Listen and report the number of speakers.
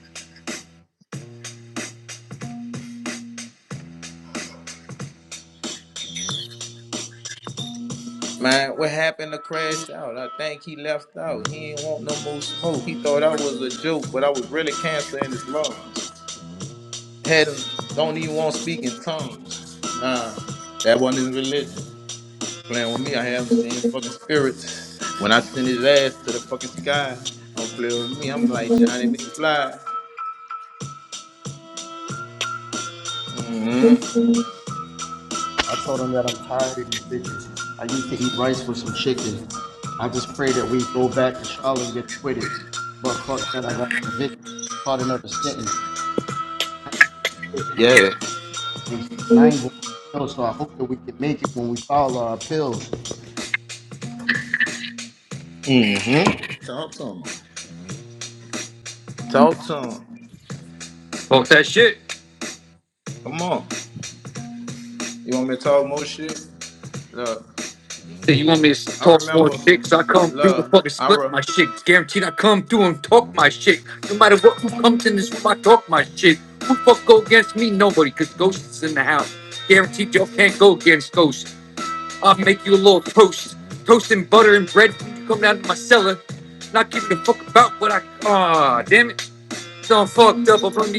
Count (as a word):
three